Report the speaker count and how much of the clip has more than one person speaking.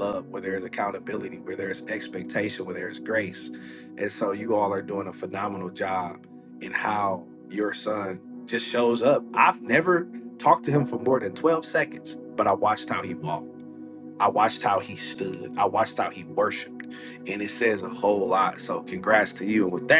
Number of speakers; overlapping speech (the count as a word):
one, no overlap